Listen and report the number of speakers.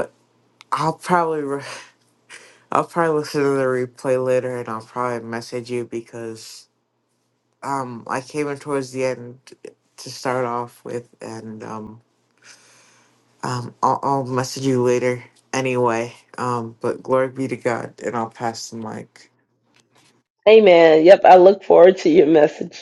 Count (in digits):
2